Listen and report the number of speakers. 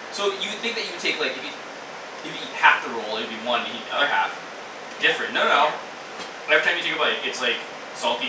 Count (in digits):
1